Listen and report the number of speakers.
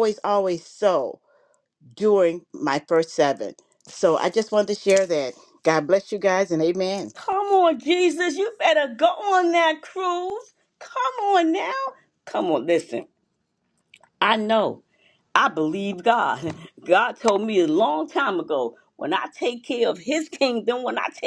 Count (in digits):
2